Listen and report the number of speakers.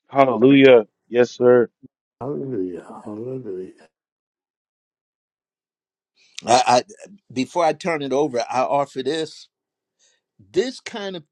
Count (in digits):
3